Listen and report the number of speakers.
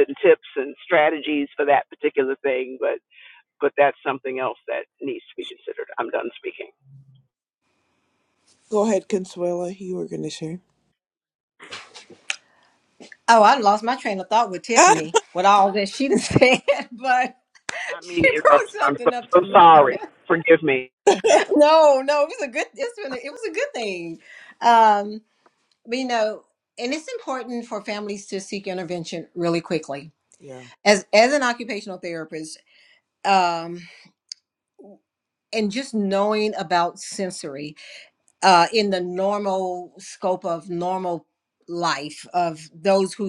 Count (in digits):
3